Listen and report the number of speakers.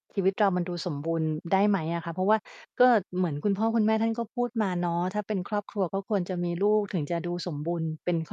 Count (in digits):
1